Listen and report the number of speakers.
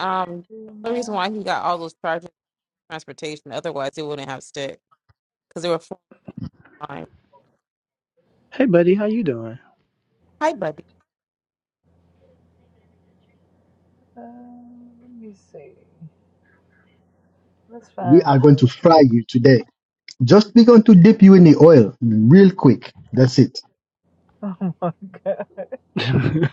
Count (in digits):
4